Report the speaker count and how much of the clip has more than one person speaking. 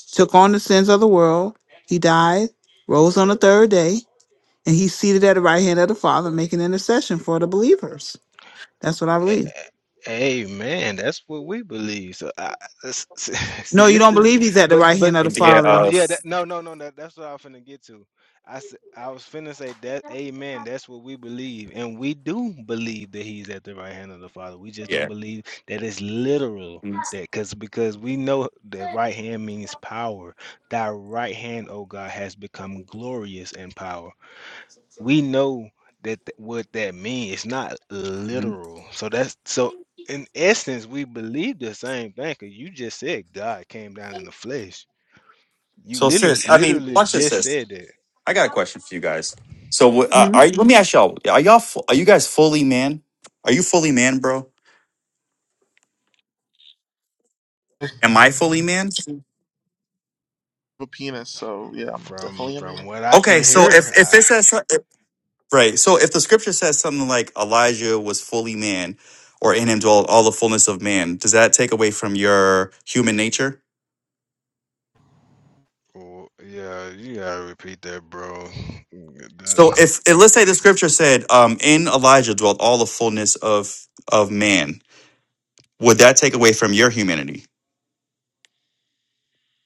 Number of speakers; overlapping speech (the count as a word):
four, about 7%